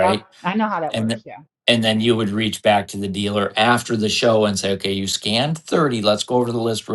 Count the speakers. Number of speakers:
2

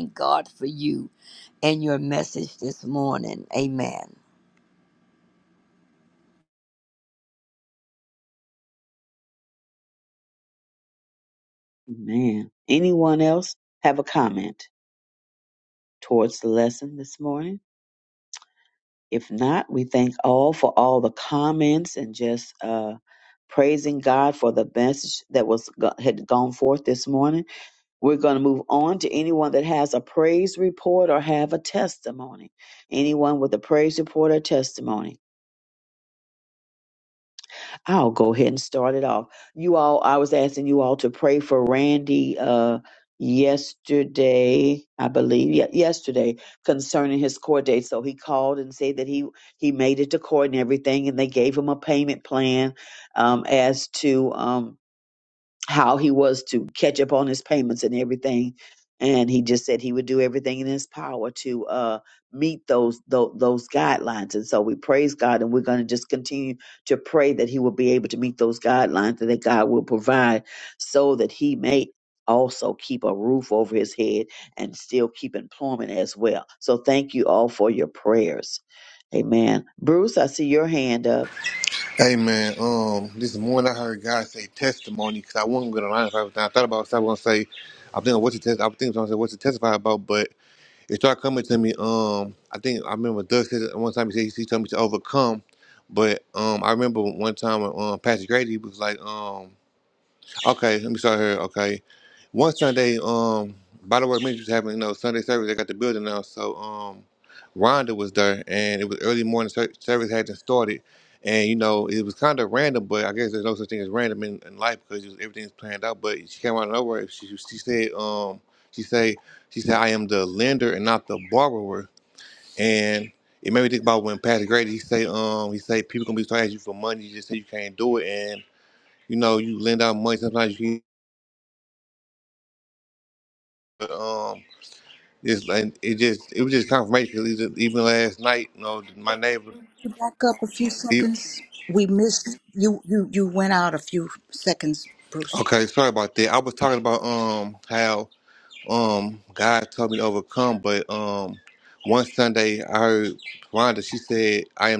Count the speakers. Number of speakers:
4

